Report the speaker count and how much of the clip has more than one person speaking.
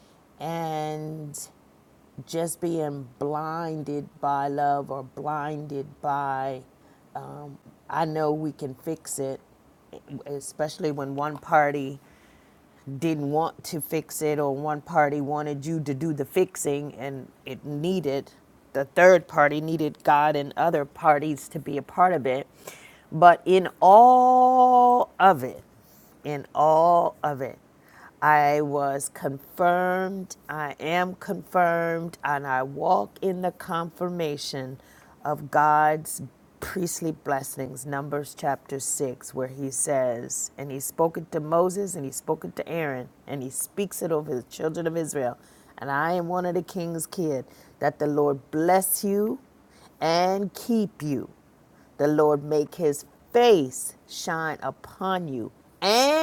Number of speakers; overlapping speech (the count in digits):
1, no overlap